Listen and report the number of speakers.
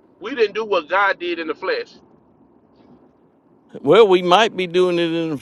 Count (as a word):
two